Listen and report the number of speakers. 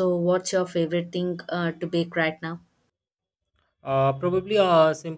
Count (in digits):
2